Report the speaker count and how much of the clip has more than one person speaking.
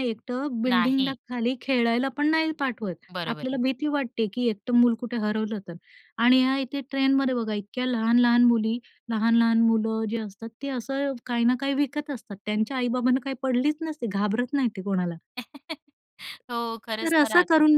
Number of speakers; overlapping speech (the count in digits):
2, about 9%